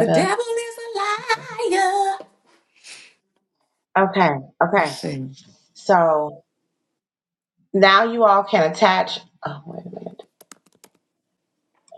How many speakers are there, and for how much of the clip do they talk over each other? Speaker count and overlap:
two, about 5%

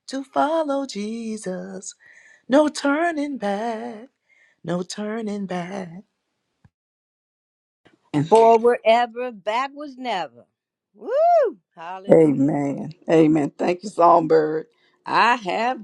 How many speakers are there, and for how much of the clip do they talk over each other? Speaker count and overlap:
three, about 3%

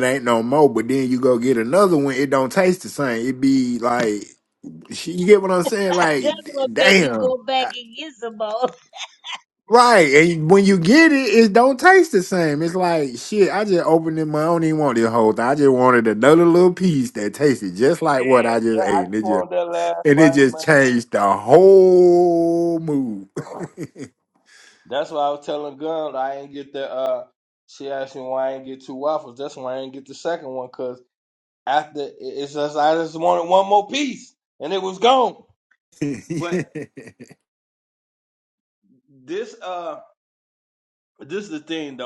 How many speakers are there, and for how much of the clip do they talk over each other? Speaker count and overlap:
three, about 8%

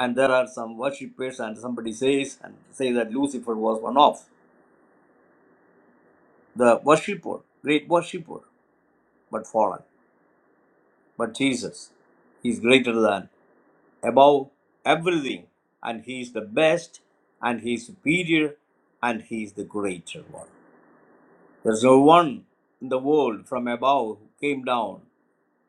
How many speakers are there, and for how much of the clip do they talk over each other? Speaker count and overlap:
one, no overlap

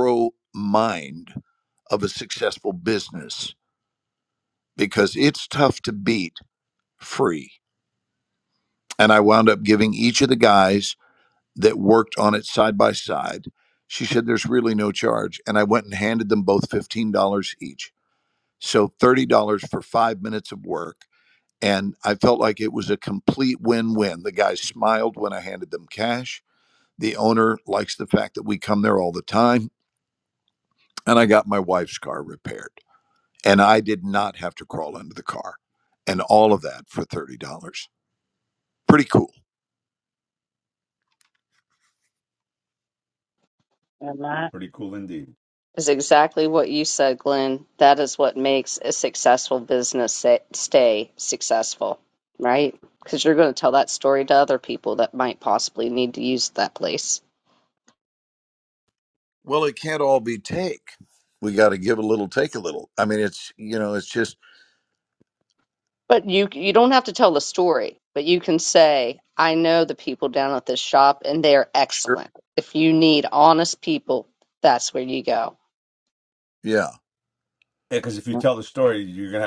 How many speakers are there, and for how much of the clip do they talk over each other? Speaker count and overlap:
three, under 1%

